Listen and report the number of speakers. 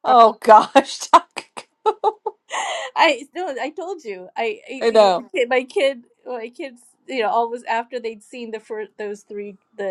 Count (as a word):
two